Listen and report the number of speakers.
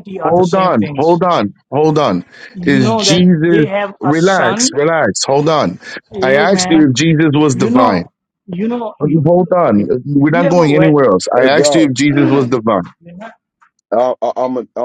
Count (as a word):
three